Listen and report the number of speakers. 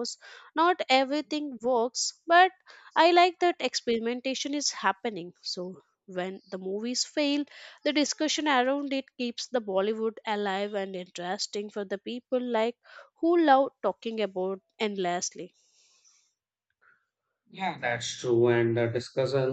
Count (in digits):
2